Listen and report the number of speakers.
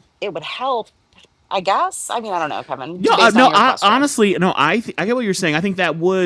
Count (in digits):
2